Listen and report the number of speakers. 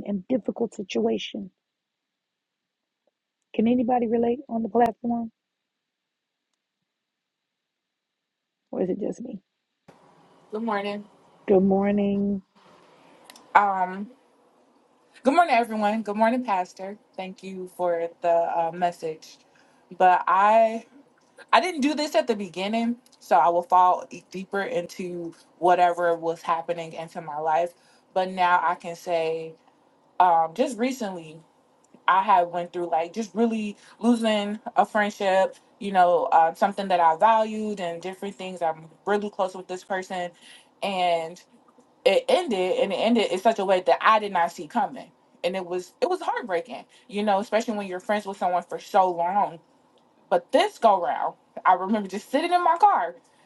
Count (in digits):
2